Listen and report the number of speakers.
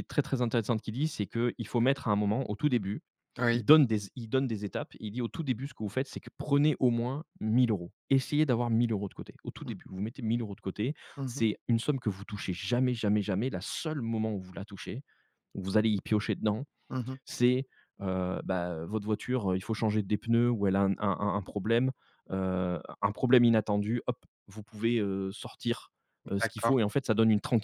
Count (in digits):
2